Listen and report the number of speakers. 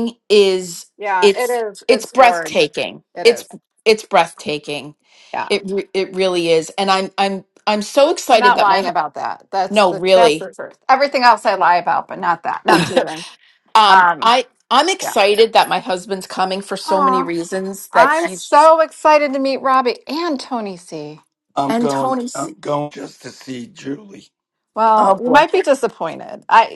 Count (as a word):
three